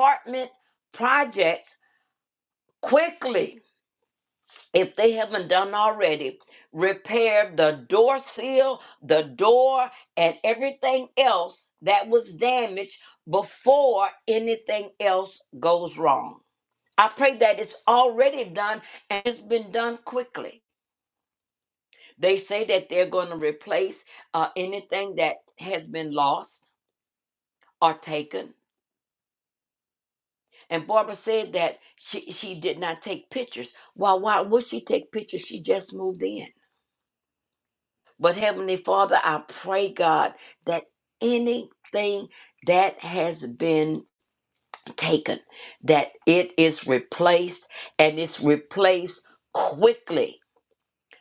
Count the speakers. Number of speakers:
1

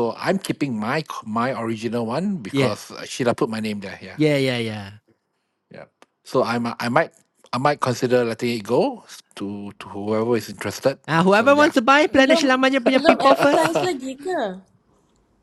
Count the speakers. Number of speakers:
3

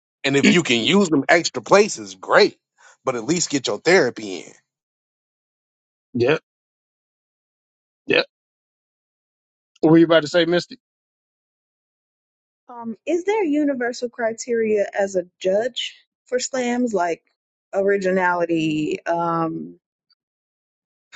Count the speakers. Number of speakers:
3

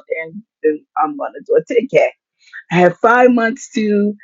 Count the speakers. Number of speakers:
1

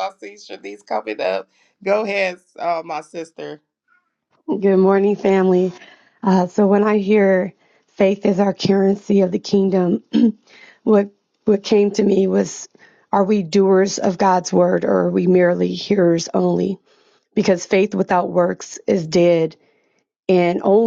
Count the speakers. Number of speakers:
2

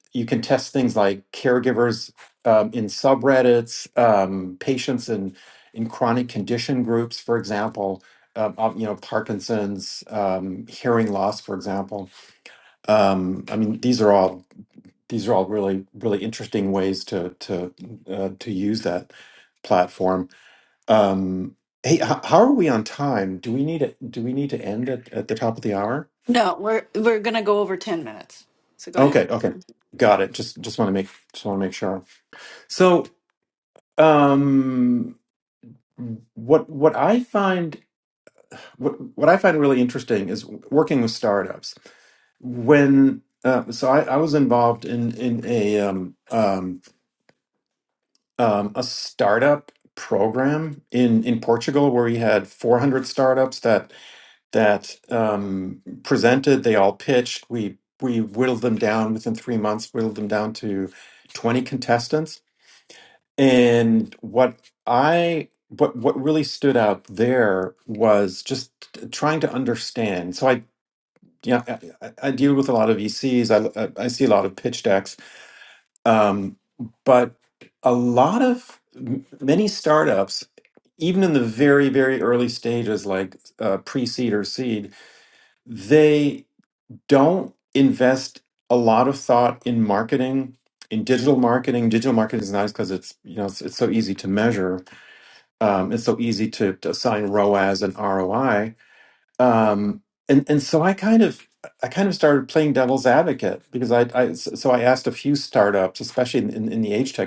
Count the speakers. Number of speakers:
2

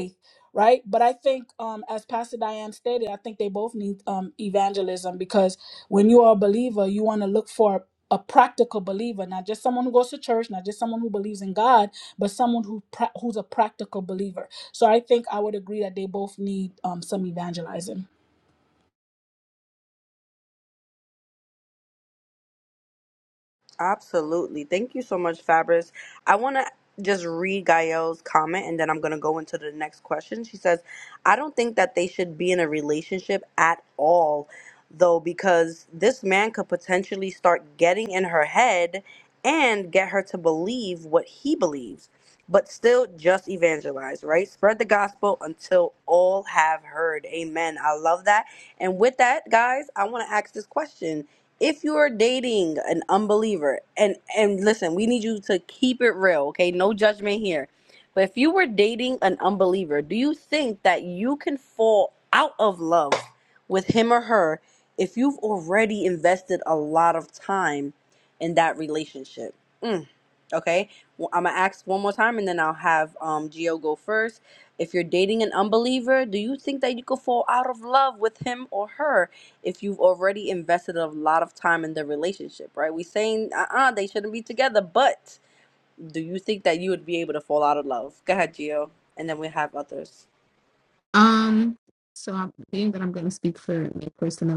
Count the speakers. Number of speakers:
3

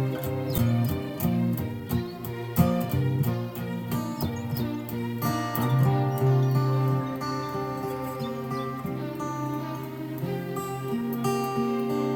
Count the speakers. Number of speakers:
0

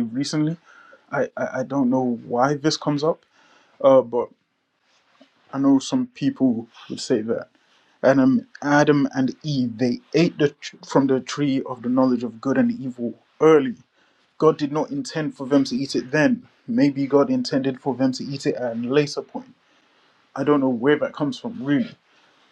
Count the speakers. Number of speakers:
1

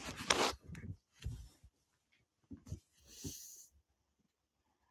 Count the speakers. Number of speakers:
0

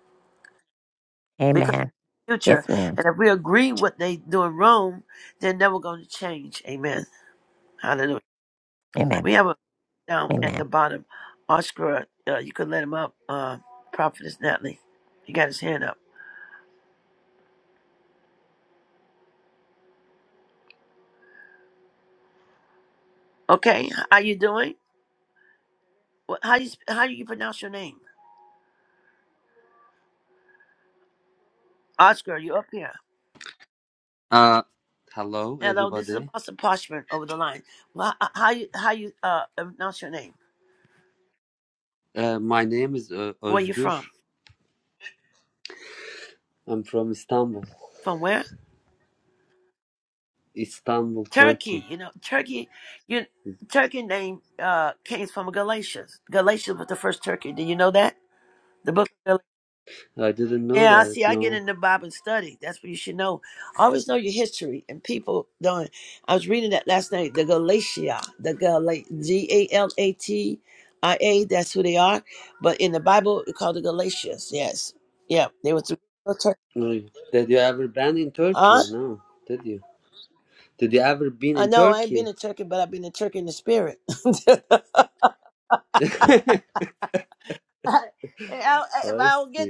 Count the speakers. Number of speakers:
3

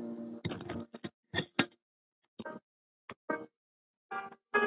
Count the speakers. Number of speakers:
0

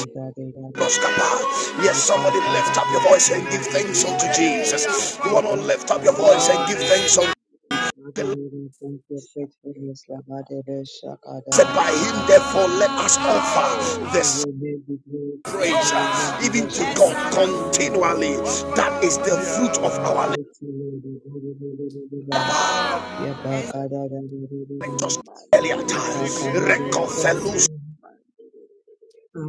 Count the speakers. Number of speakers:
3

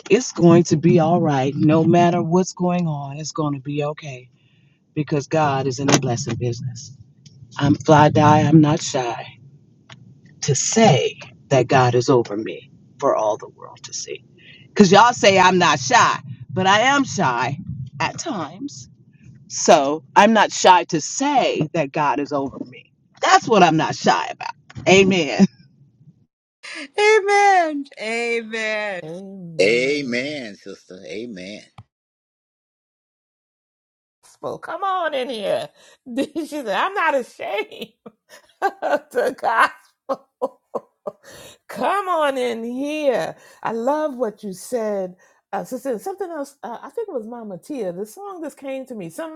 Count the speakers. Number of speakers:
4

